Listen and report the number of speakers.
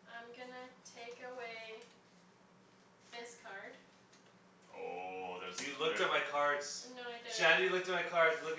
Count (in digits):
3